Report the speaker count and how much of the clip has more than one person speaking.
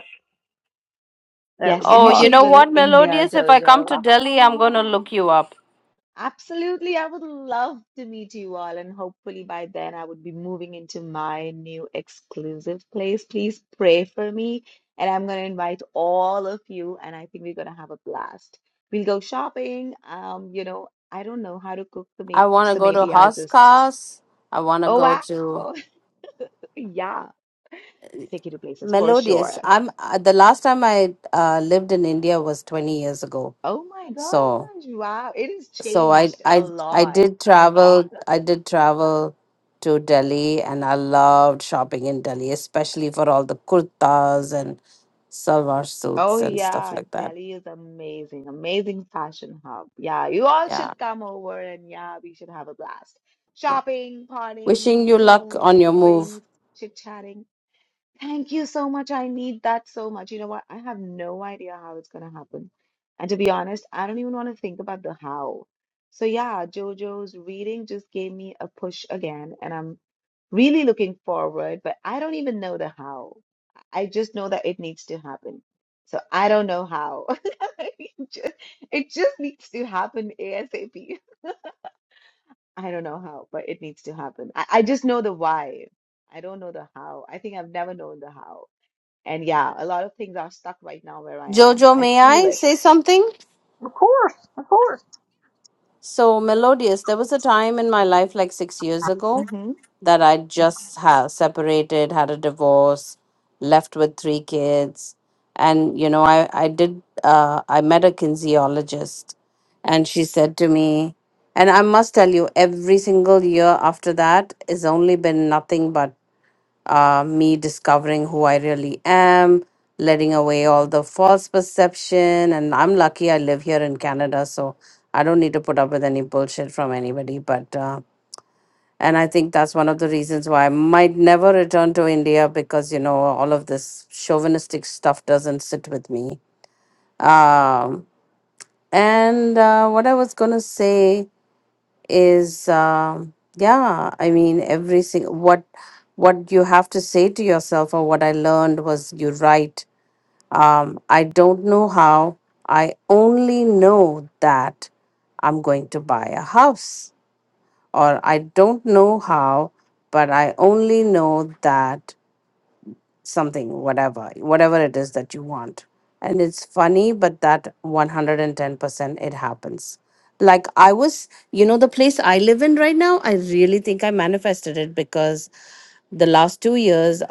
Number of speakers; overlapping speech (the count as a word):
three, about 6%